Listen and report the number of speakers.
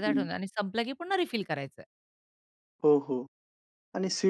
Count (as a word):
two